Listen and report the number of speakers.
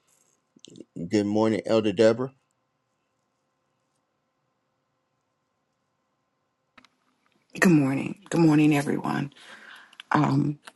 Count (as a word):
two